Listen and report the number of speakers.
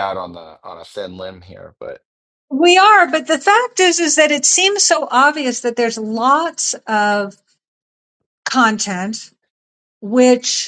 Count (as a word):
two